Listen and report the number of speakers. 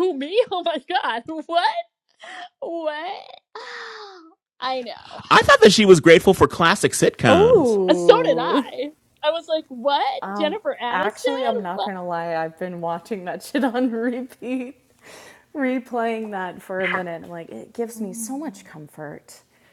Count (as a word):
three